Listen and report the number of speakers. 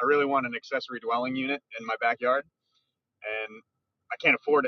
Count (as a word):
one